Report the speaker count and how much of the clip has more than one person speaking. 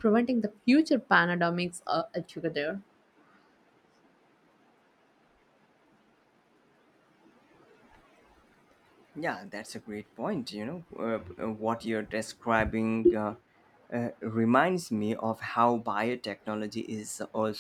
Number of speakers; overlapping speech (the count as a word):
two, no overlap